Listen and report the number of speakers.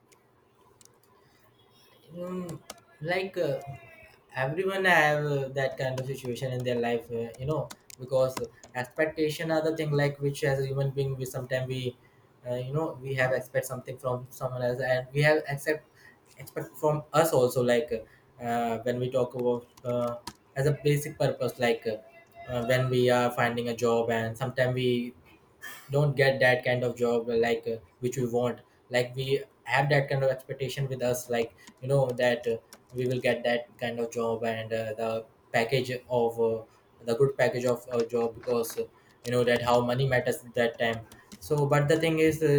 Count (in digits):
1